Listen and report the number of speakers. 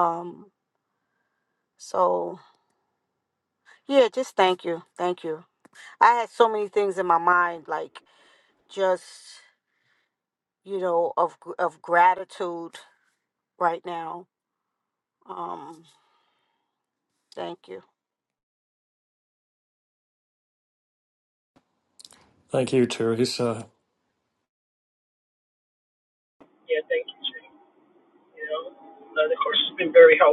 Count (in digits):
3